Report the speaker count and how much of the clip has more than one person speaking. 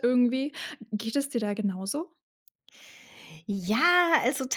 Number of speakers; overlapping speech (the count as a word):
two, no overlap